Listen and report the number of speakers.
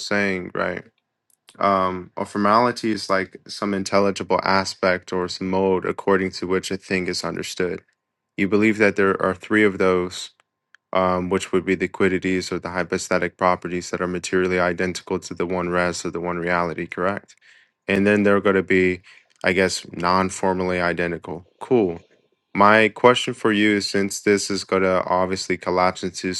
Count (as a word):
one